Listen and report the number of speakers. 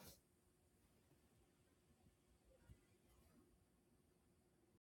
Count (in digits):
0